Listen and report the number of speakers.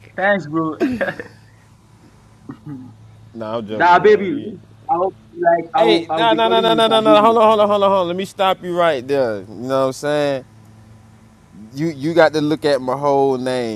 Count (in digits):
2